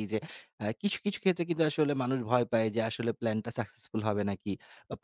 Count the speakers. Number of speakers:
1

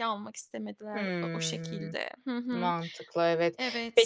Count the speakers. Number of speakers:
2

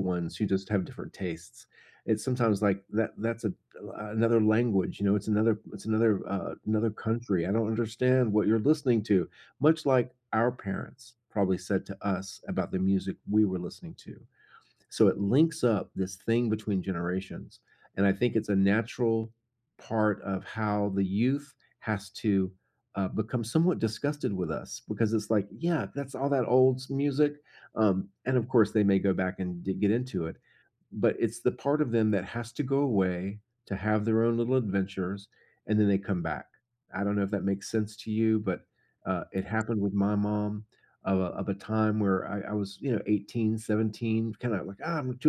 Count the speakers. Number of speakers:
1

